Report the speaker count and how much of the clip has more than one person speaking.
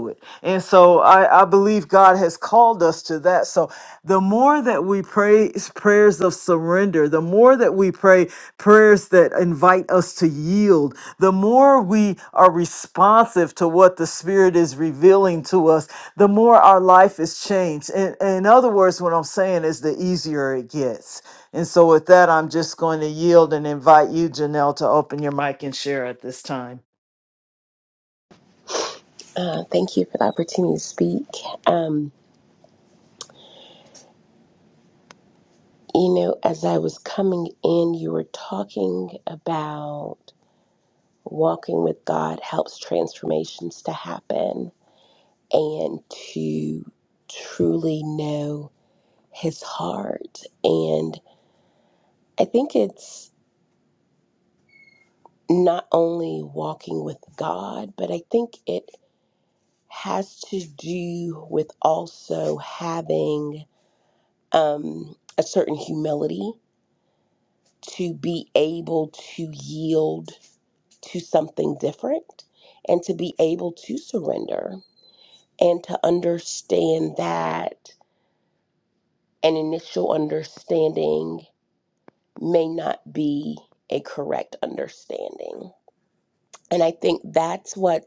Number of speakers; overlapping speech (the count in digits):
2, no overlap